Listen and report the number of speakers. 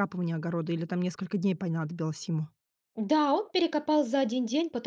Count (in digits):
2